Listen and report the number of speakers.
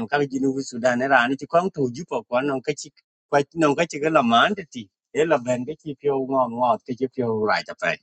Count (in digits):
1